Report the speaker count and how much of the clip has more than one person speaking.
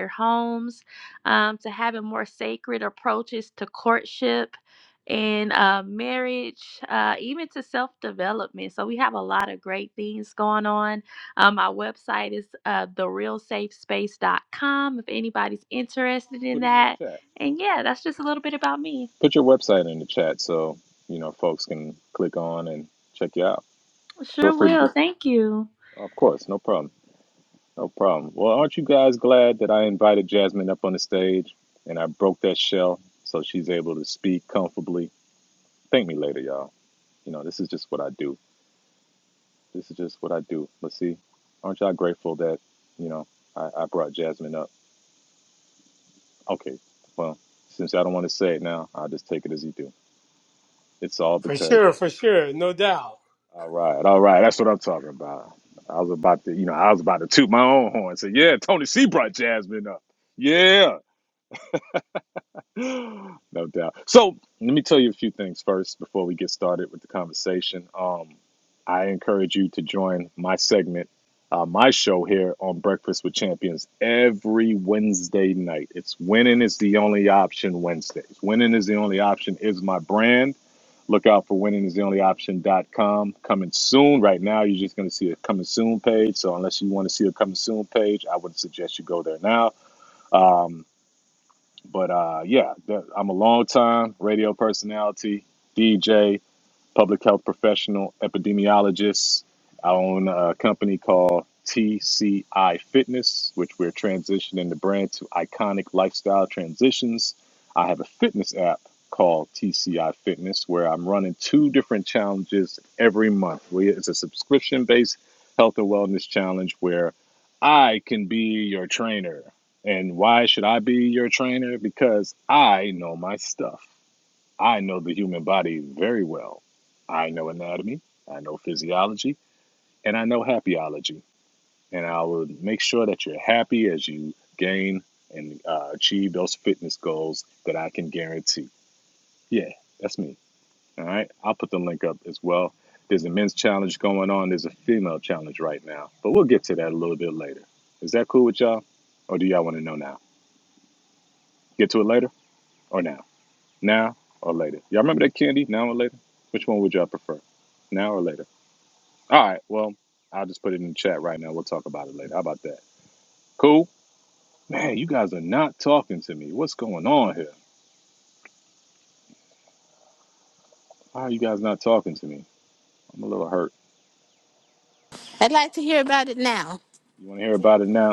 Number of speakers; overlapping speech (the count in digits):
4, about 1%